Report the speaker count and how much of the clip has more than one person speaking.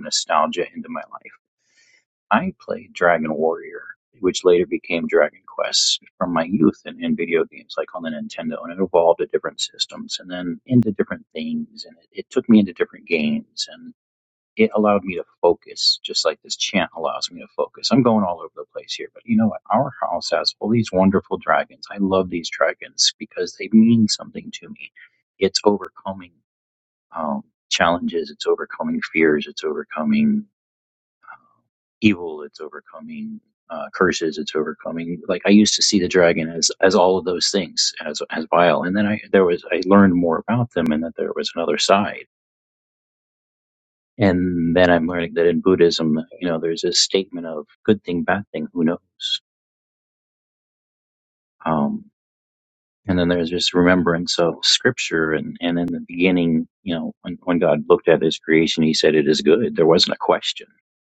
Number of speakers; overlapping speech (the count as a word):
one, no overlap